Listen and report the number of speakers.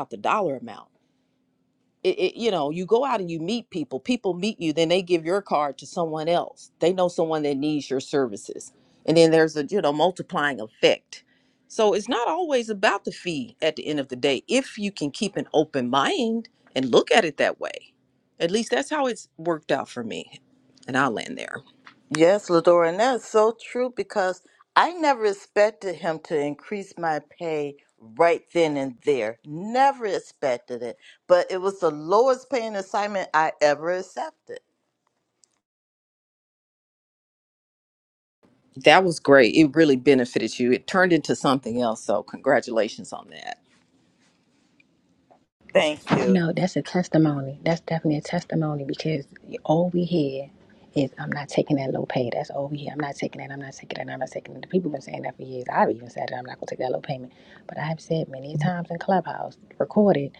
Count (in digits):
3